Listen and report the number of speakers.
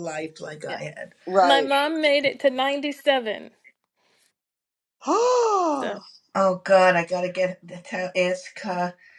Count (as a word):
three